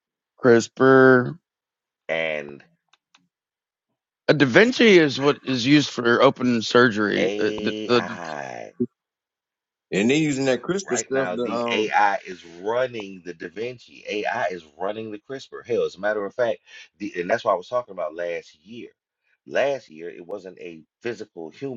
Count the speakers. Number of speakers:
3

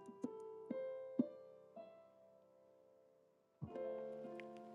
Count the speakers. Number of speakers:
0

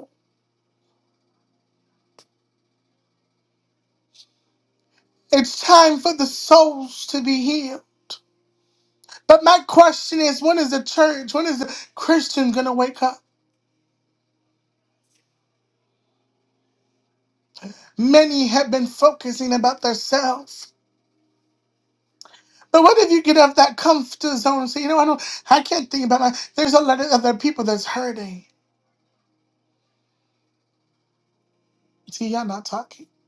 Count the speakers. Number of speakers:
1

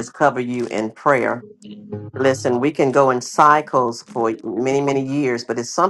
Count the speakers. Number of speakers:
1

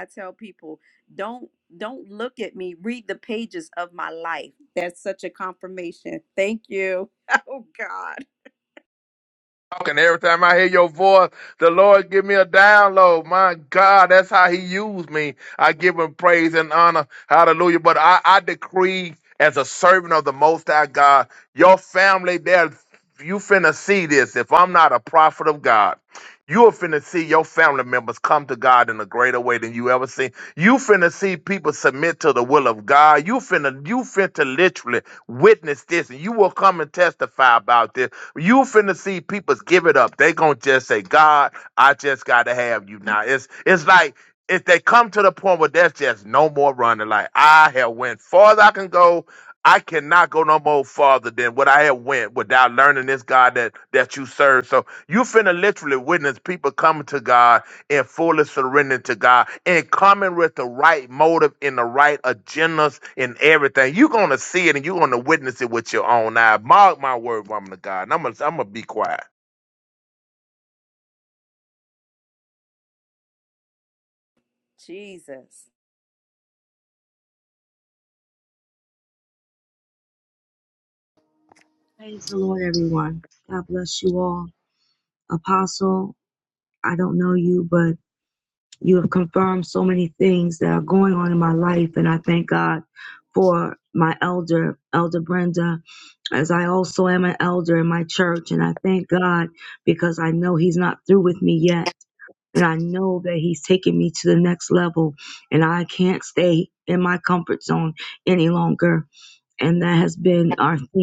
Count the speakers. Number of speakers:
3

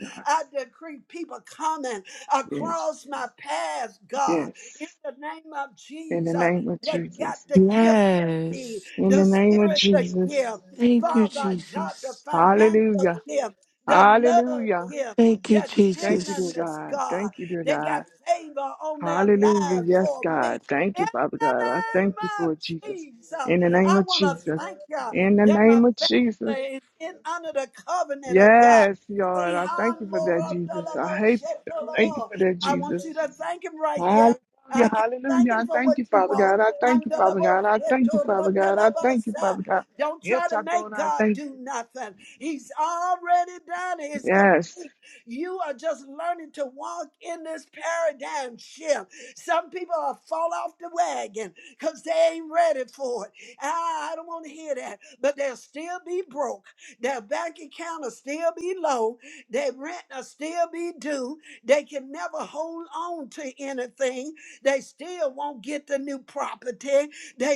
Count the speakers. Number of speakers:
3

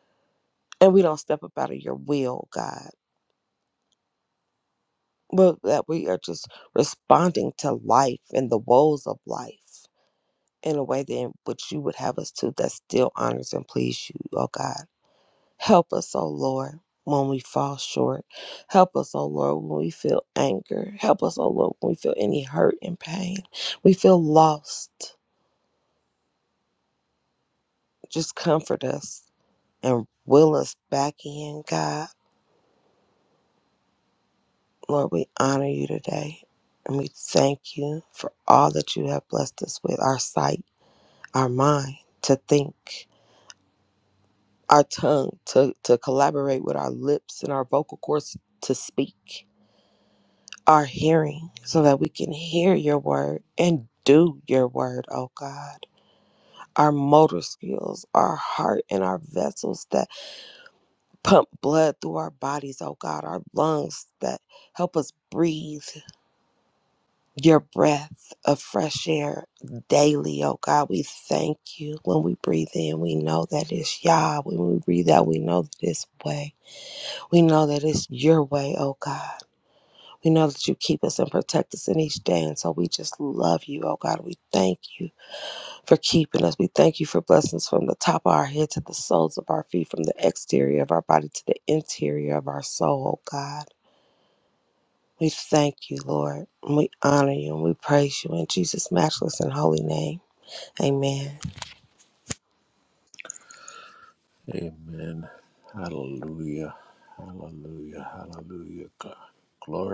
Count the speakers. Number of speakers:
2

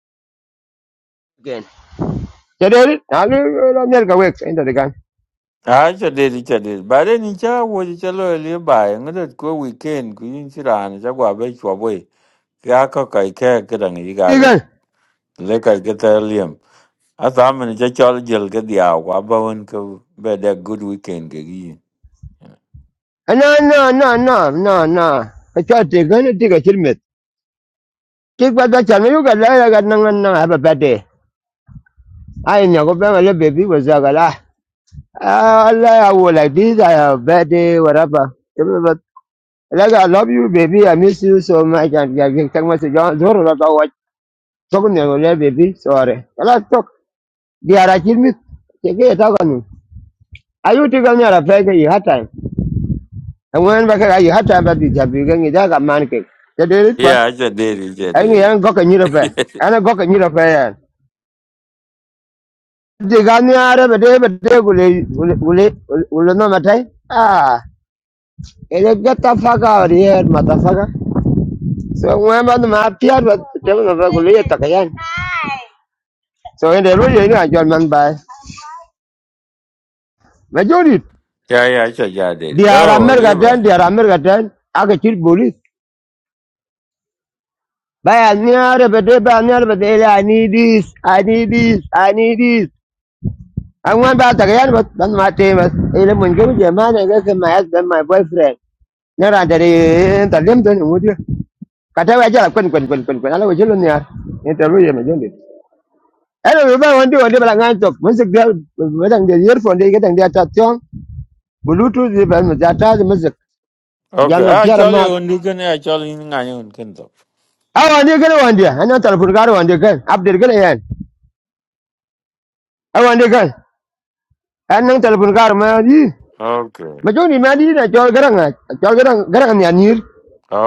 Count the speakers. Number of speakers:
2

